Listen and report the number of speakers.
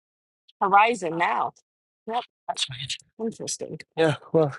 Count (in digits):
2